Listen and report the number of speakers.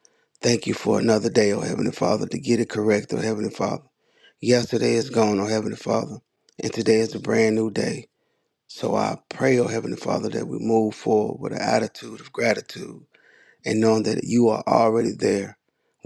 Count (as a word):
one